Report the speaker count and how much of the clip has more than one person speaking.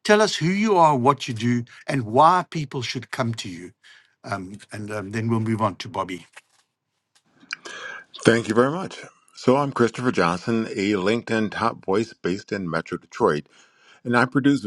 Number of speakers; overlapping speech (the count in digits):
2, no overlap